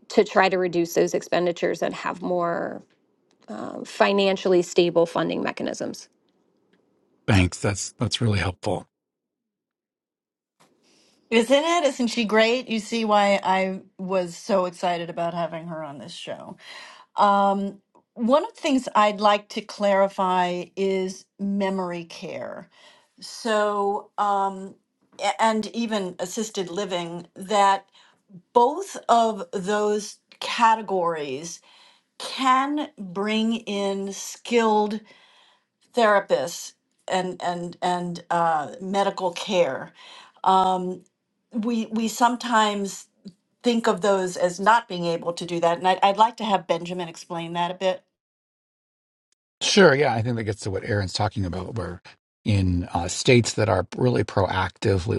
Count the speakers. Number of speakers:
3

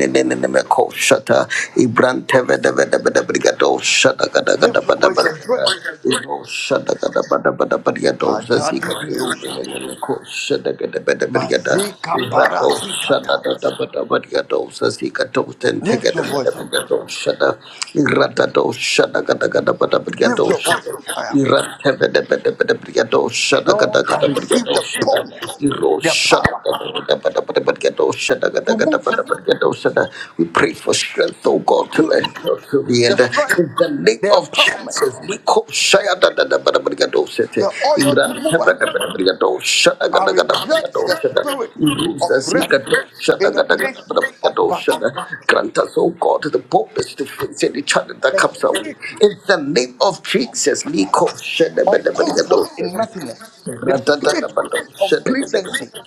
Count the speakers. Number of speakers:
2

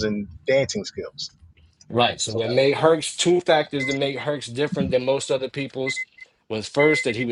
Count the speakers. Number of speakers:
2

